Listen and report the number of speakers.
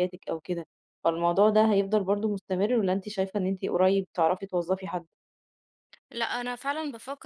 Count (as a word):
two